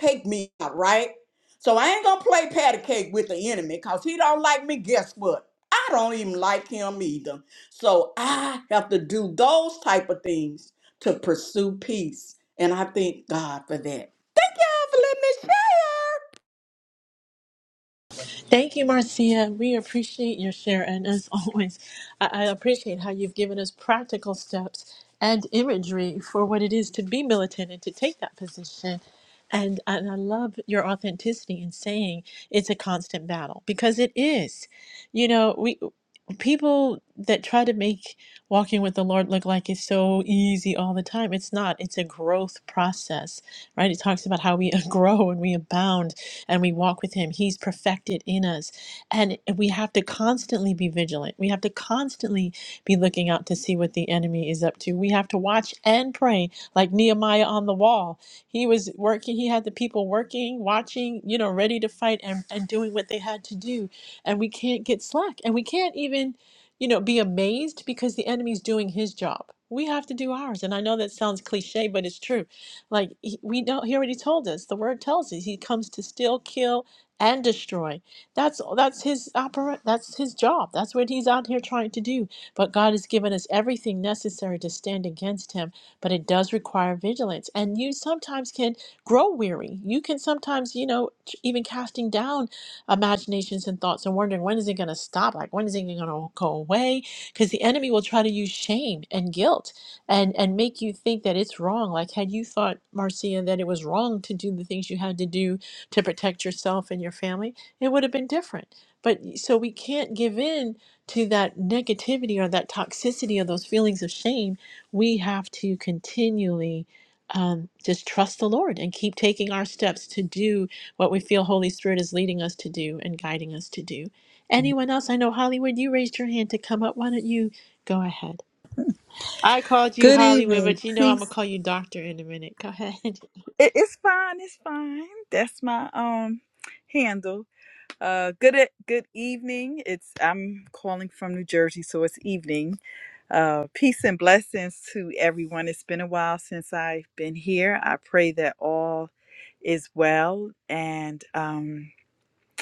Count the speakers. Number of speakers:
three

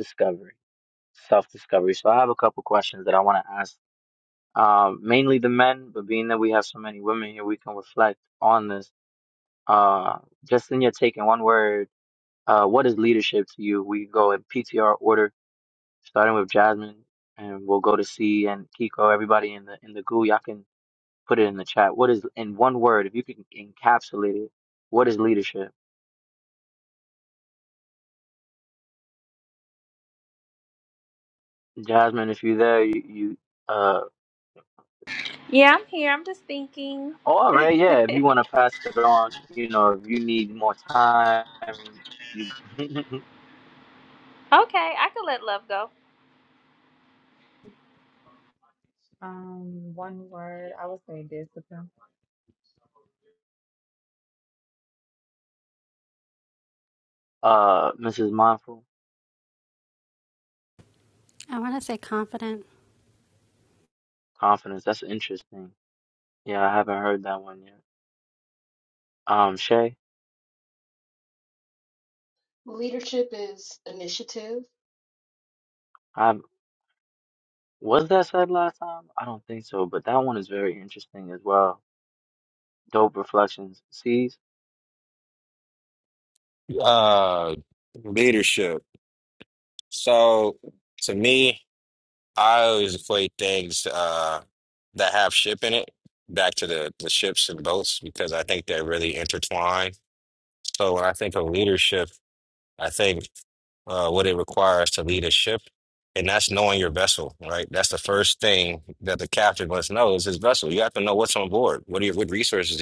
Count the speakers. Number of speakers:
six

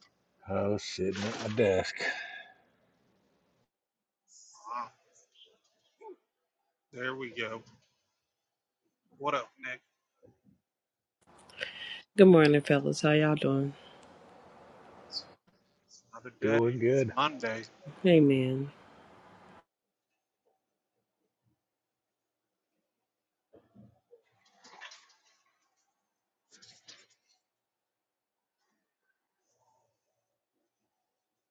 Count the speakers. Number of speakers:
three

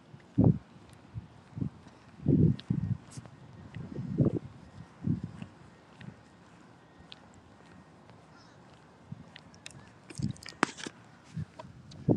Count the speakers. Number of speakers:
zero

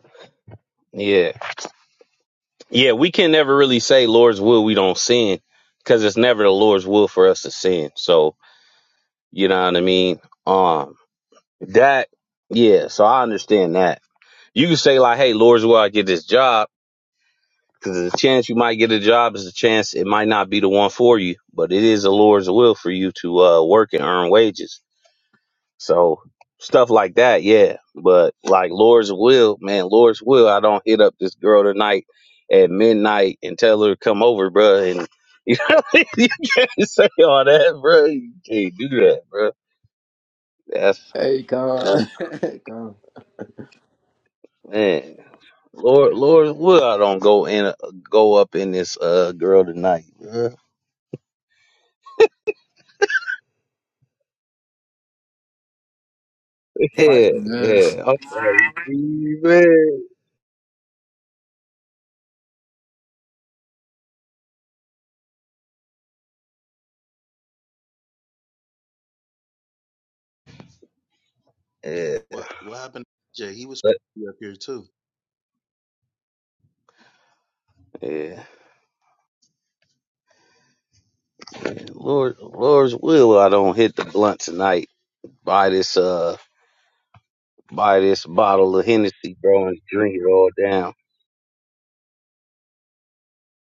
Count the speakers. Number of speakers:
three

